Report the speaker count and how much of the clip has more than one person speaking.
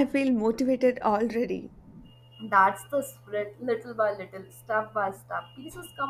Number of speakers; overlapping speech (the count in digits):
2, no overlap